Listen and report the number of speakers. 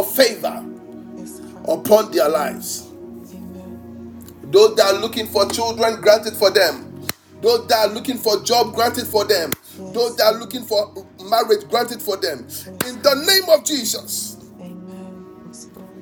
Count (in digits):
2